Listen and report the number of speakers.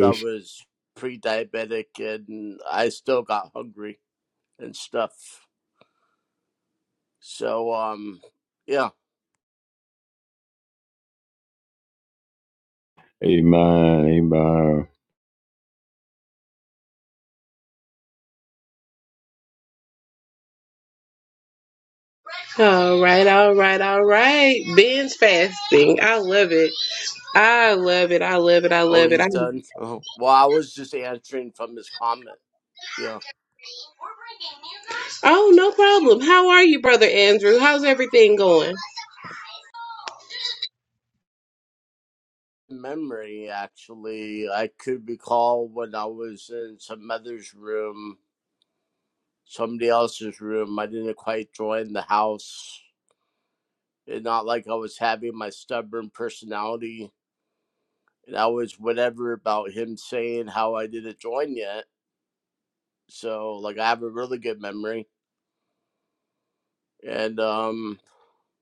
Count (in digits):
3